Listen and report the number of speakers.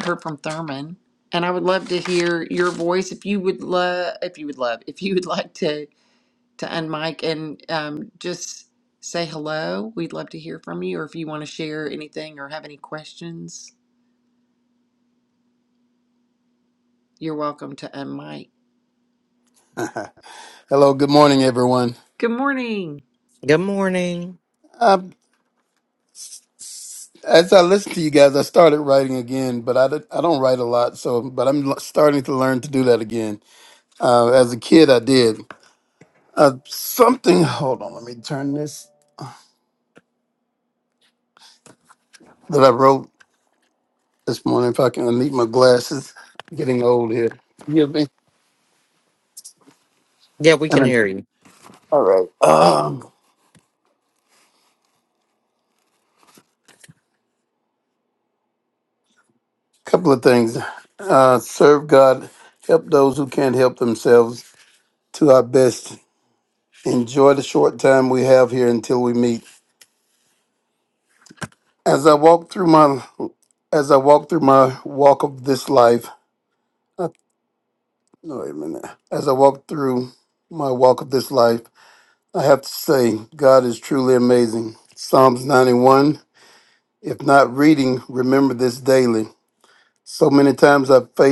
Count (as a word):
three